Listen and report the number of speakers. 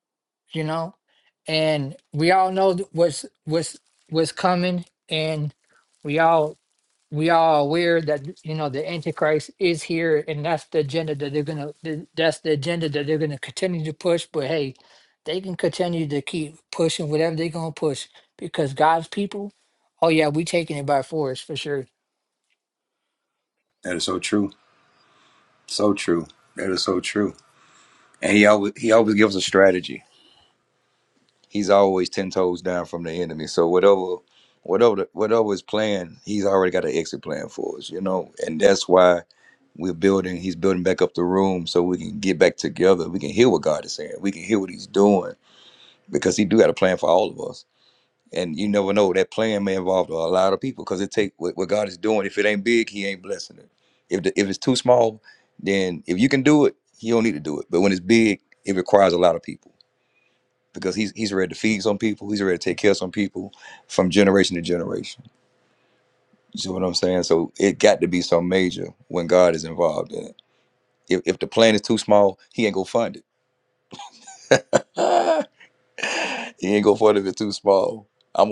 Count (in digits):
2